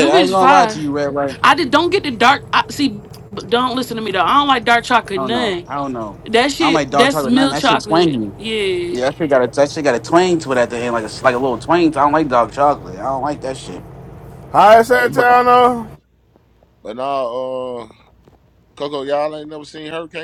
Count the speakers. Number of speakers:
4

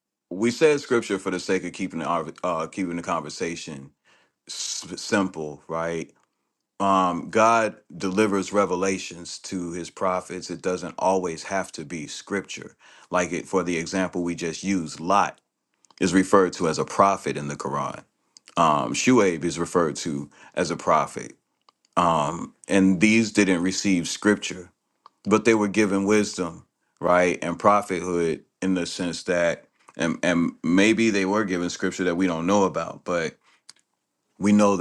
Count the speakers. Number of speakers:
1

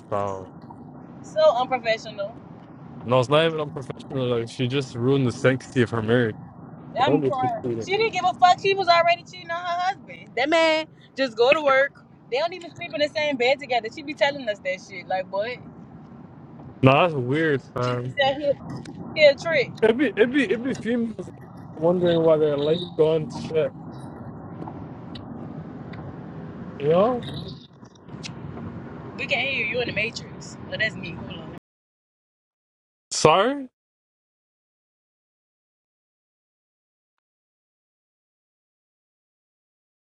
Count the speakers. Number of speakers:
2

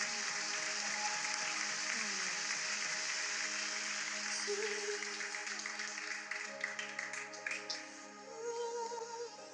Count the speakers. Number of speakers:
0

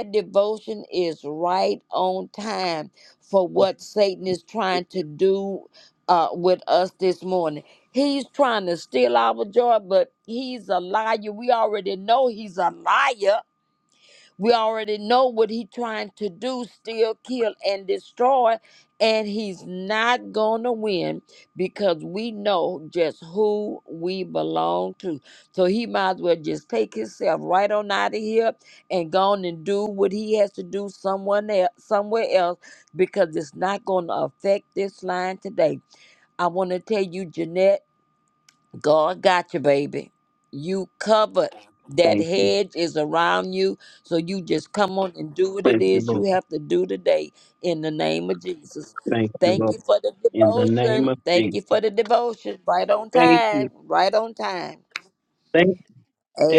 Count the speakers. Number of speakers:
2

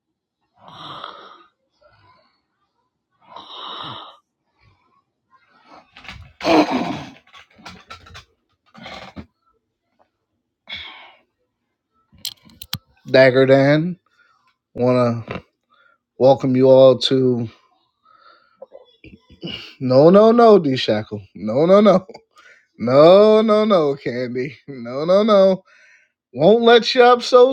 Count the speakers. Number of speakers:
1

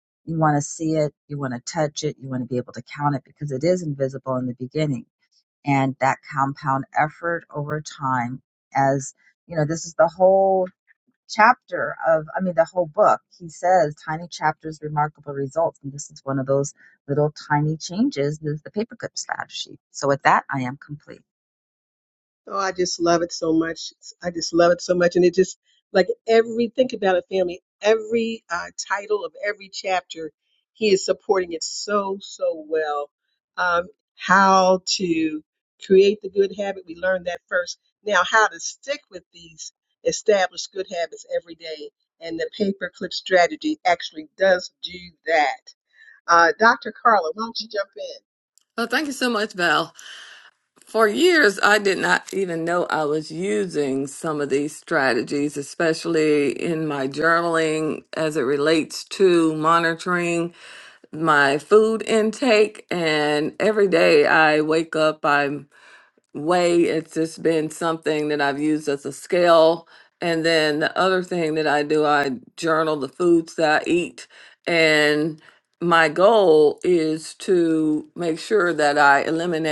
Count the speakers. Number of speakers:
3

